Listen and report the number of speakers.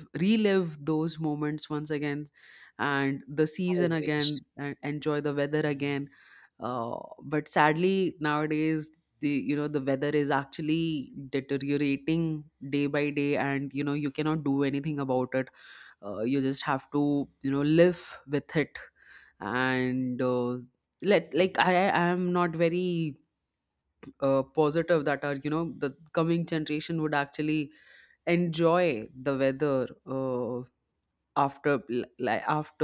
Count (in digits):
1